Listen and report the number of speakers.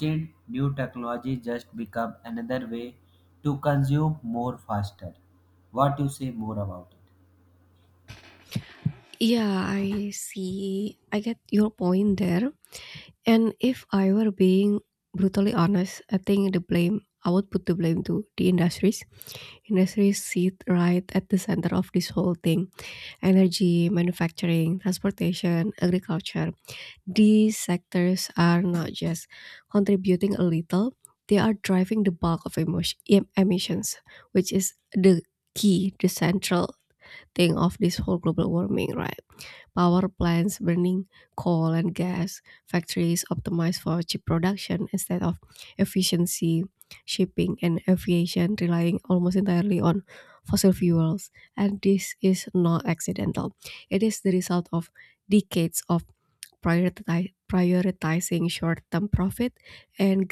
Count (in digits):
2